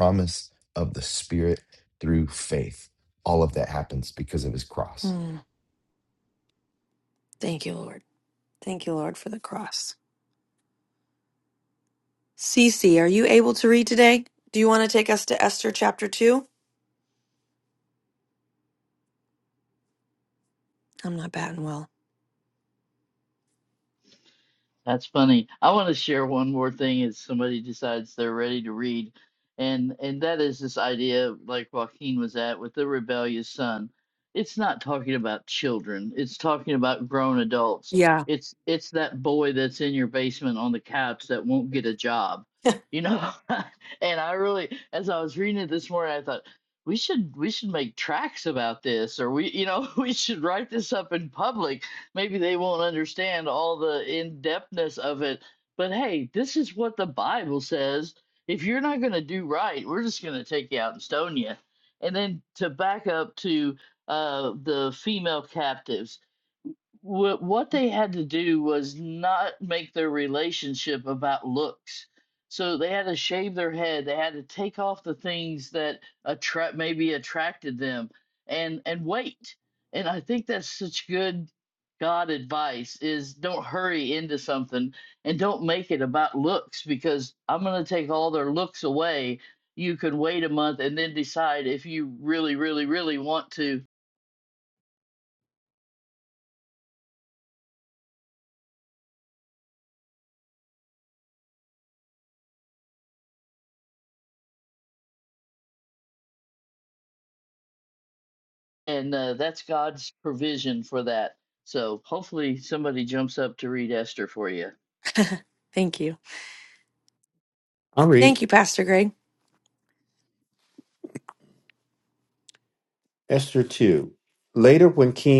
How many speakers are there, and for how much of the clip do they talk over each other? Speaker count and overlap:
four, under 1%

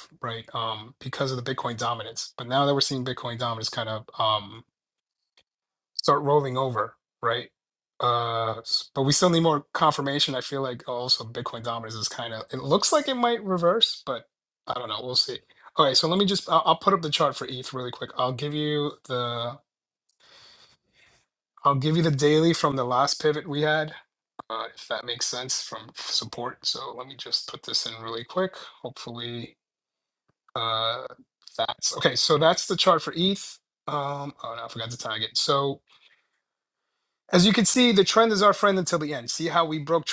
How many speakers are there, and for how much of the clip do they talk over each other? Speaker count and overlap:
one, no overlap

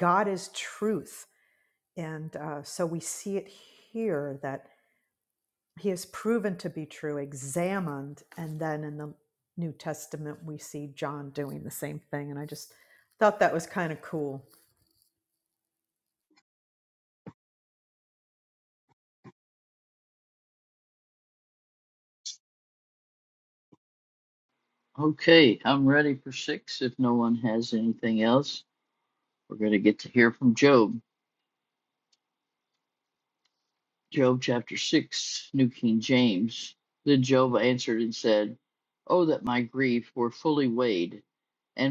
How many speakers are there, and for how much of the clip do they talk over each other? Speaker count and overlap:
two, no overlap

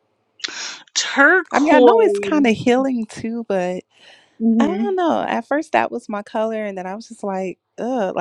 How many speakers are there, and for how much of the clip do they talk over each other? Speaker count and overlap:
two, about 9%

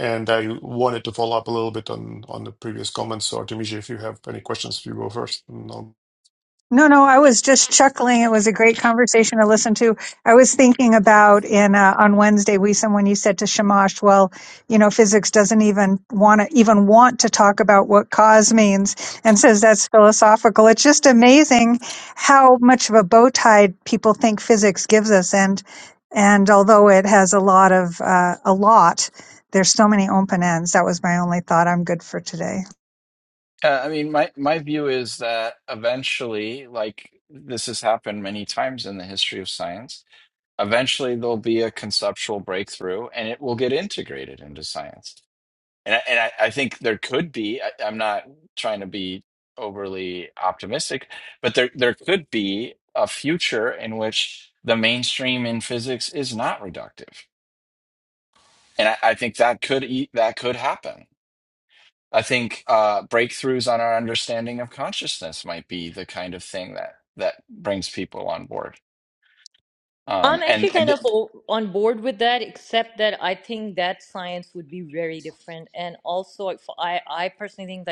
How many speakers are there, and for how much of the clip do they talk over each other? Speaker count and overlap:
four, about 1%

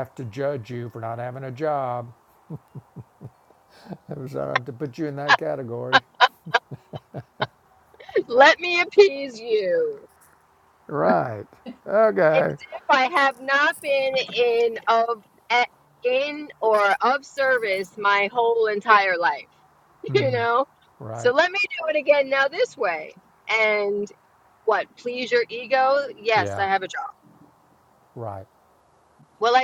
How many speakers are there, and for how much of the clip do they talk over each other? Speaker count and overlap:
two, about 2%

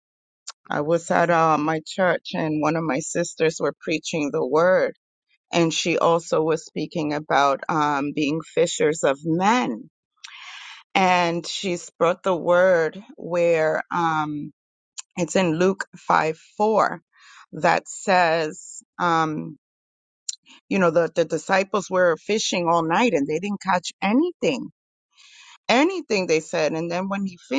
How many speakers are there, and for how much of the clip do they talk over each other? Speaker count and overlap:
one, no overlap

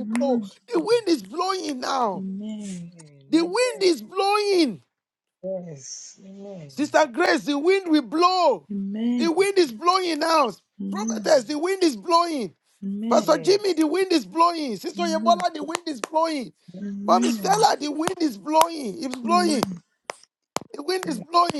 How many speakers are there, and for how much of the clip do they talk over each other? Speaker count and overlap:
three, about 18%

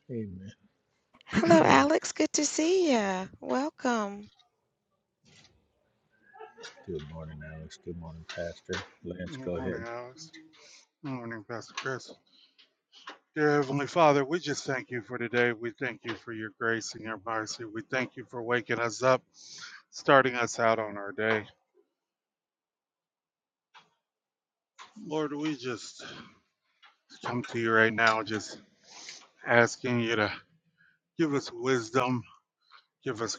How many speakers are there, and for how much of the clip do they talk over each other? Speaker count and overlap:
three, about 2%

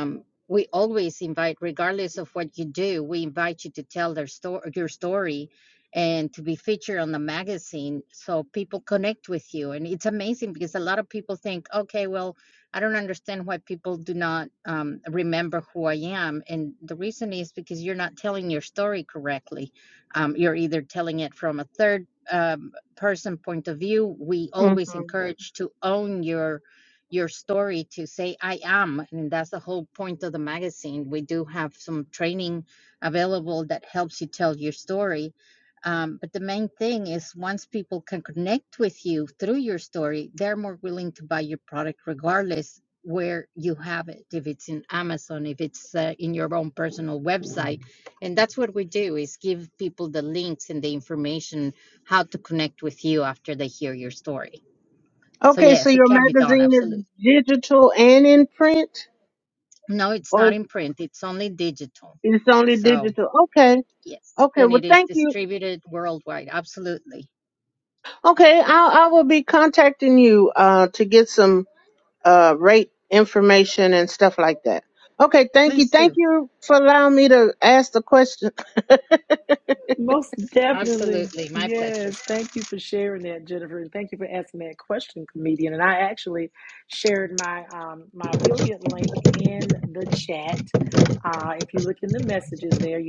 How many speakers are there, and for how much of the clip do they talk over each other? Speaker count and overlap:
three, about 5%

